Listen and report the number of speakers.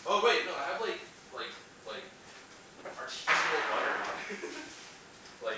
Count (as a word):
one